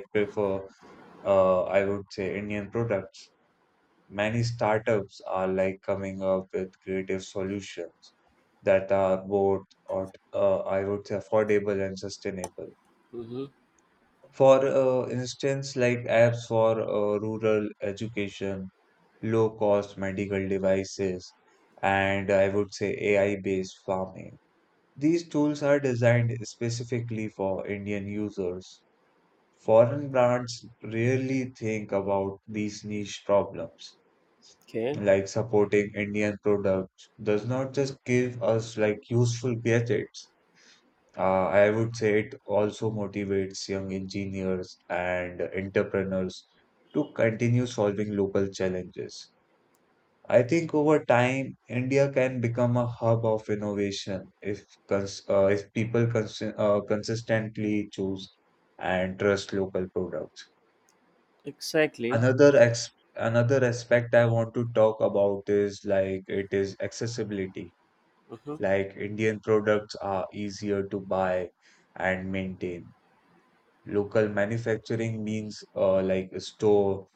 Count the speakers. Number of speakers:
two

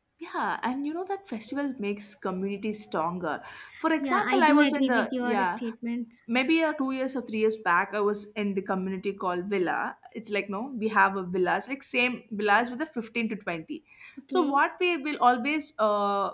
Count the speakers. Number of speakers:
two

